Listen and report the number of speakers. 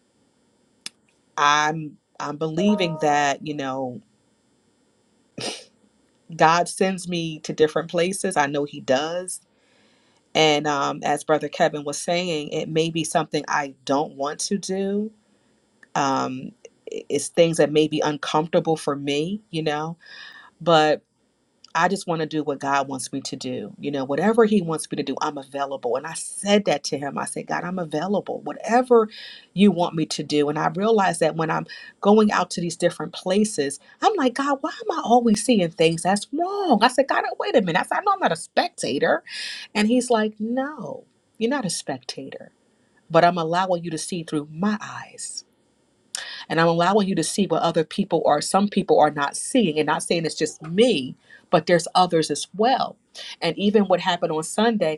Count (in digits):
1